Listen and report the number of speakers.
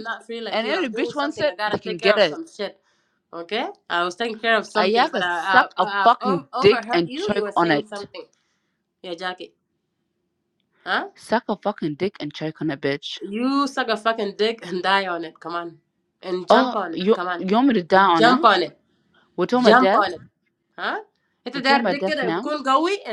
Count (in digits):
2